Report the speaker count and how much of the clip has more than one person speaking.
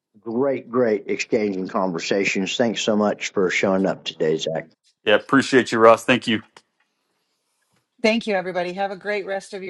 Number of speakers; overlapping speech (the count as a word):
three, no overlap